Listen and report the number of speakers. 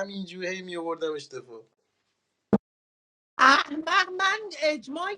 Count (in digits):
2